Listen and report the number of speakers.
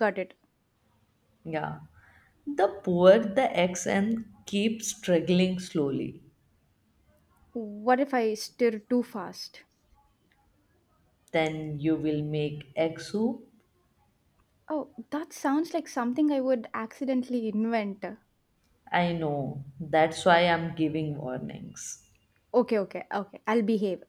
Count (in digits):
2